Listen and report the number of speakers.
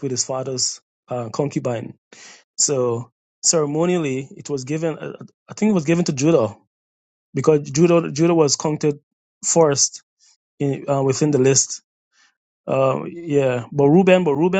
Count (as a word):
one